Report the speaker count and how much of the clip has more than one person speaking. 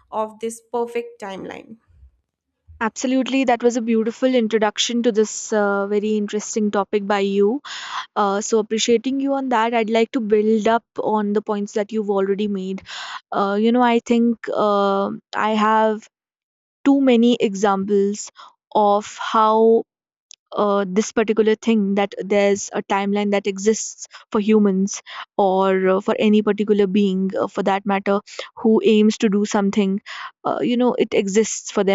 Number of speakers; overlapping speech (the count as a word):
two, no overlap